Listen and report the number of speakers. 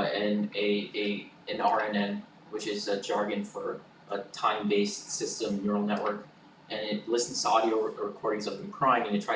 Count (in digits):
1